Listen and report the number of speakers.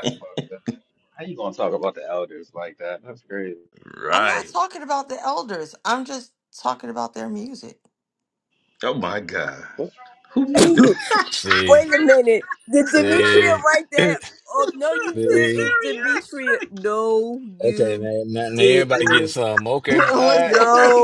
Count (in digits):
5